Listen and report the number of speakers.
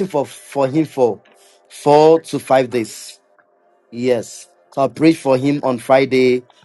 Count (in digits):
1